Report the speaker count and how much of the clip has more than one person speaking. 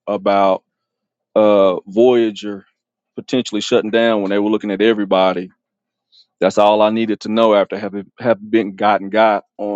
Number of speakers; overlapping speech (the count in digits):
1, no overlap